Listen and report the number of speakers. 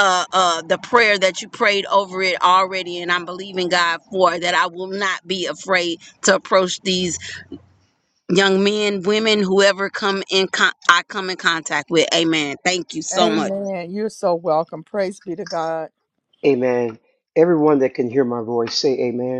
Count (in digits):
3